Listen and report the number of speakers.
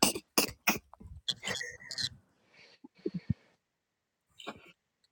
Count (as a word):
zero